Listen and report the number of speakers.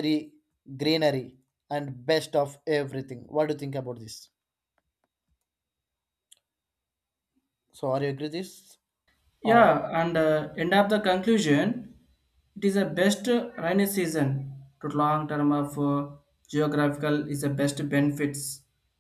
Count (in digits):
2